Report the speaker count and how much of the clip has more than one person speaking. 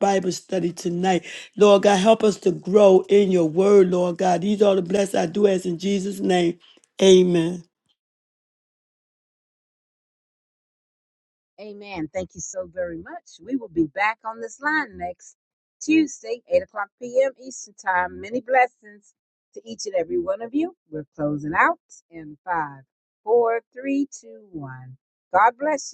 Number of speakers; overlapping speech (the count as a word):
two, no overlap